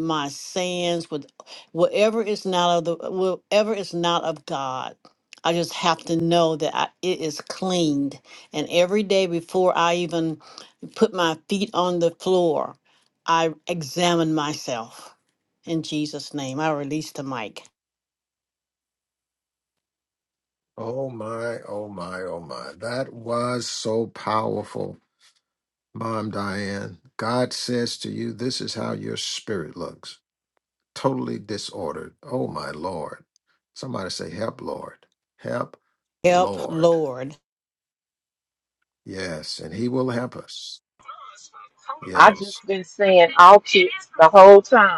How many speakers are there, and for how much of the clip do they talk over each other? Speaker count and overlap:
3, about 2%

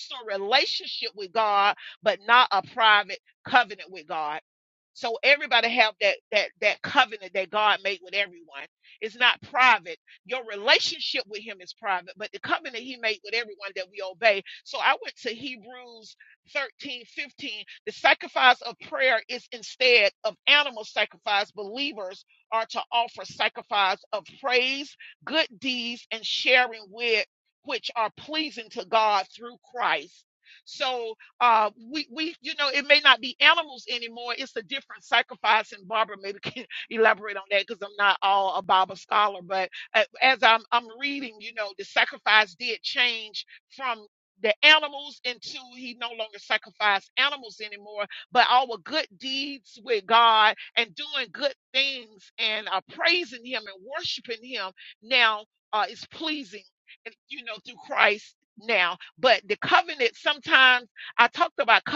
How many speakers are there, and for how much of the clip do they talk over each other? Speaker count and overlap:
1, no overlap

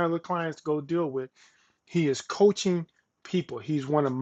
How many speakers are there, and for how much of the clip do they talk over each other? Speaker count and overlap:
1, no overlap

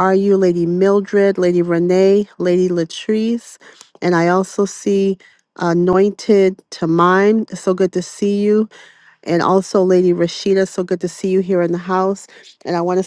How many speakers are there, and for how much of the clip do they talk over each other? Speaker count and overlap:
1, no overlap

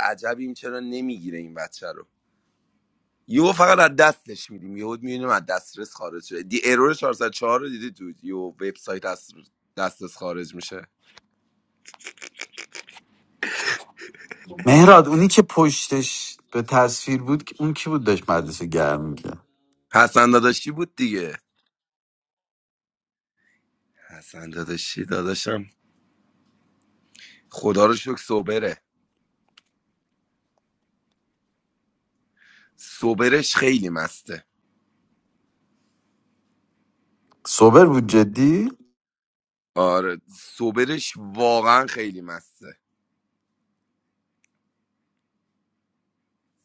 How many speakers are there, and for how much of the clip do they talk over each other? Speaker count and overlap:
2, no overlap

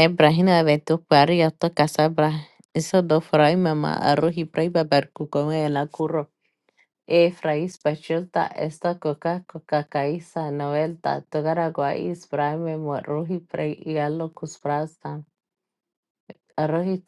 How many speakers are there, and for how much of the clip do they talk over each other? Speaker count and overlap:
1, no overlap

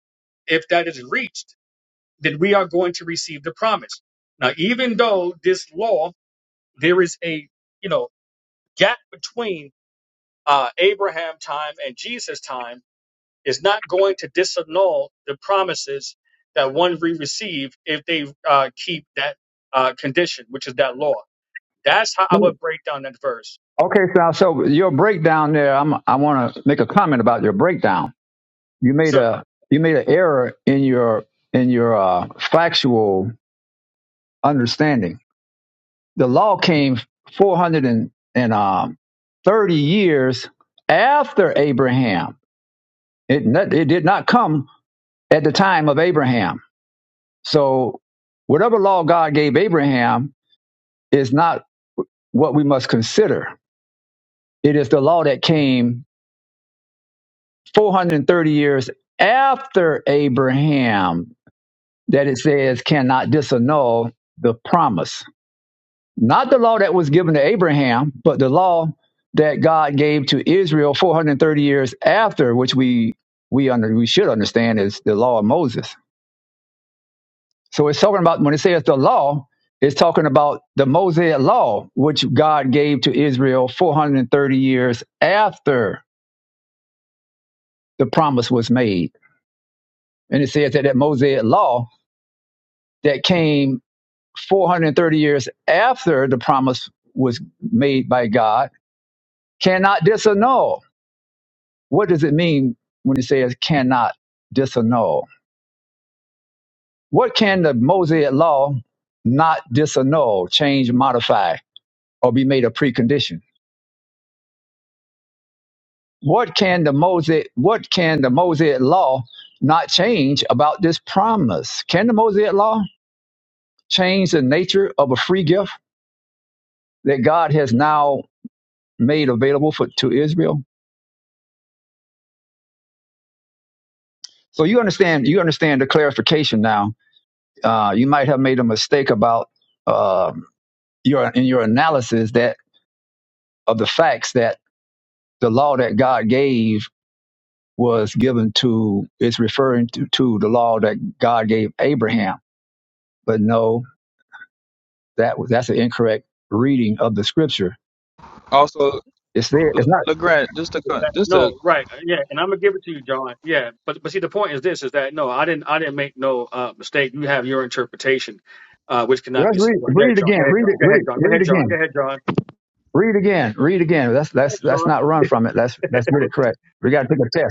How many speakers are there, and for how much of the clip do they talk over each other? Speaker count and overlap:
3, about 2%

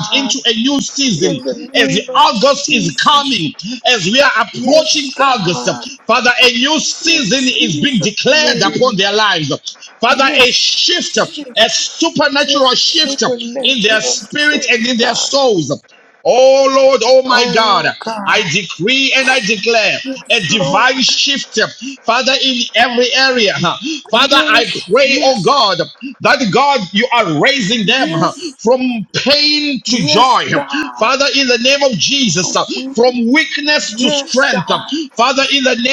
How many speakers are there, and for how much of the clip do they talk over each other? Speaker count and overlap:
2, about 36%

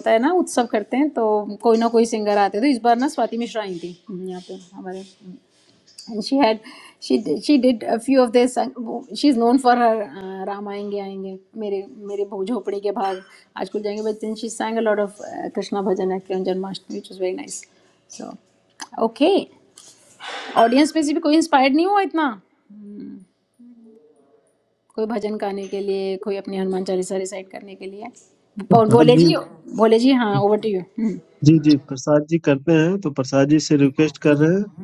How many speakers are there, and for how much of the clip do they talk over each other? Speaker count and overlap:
2, about 2%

